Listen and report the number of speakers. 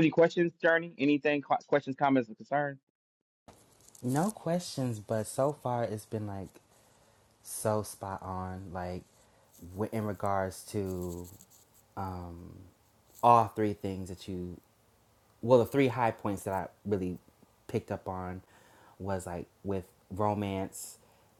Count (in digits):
2